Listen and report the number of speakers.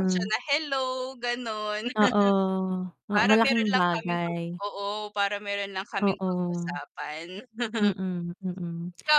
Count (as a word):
two